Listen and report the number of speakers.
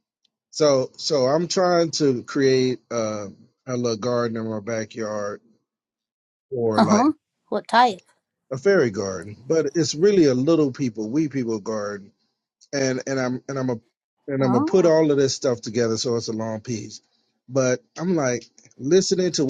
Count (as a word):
two